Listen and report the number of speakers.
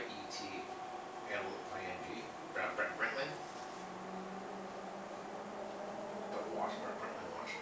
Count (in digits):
1